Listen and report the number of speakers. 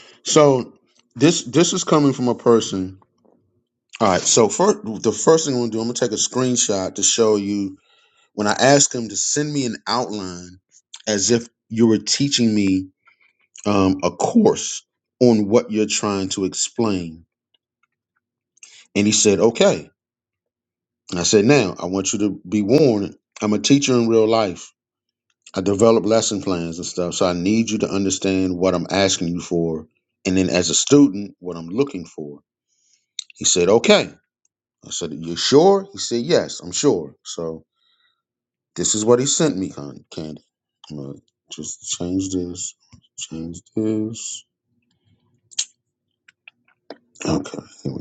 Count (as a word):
one